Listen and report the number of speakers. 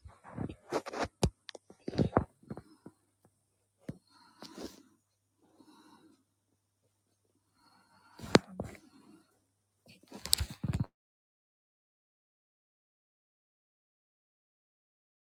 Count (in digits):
0